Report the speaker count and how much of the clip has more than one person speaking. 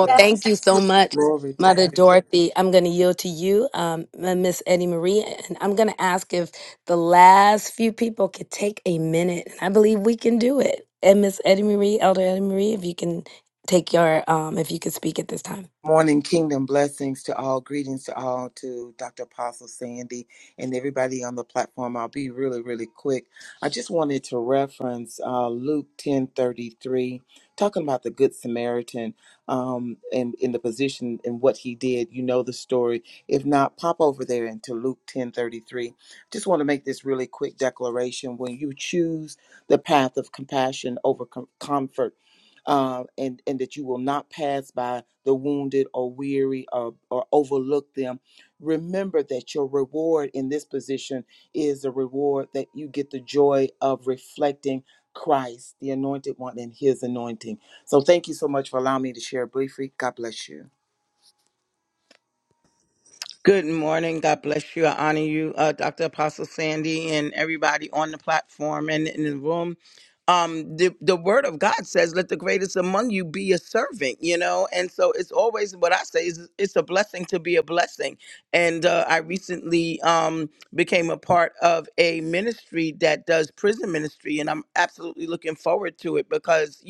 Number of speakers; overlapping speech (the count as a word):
three, about 1%